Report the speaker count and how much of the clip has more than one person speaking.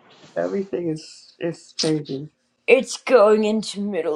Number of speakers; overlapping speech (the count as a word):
two, no overlap